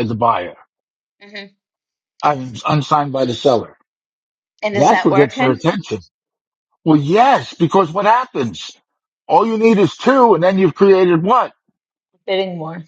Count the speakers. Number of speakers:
two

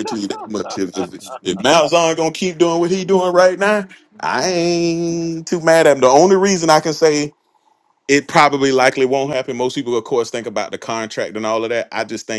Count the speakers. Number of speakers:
one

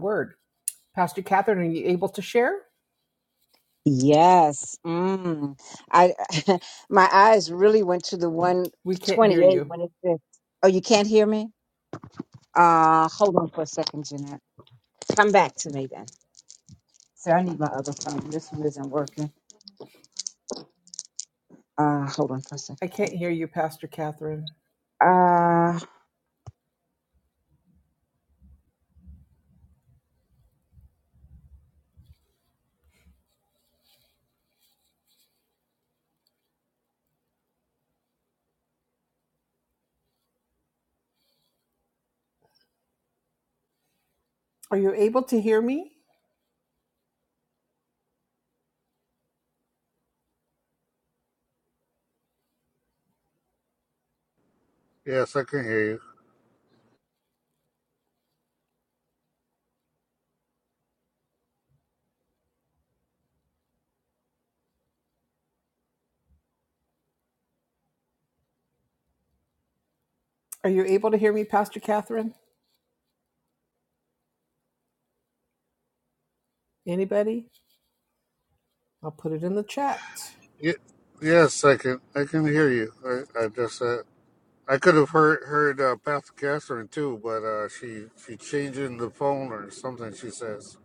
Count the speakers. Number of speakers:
three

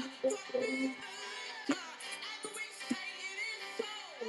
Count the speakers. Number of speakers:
zero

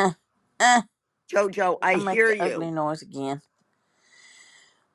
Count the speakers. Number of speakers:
two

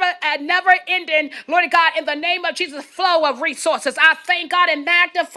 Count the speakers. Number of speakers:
one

